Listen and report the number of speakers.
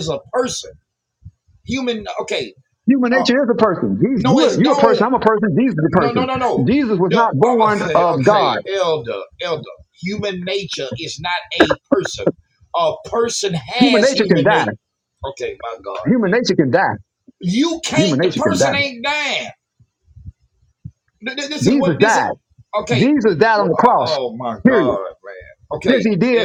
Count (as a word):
two